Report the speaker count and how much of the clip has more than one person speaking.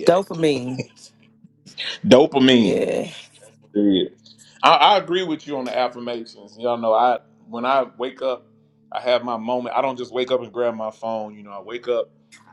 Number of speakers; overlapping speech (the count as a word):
two, about 3%